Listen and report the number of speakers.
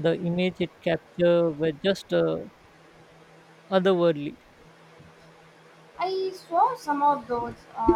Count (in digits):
2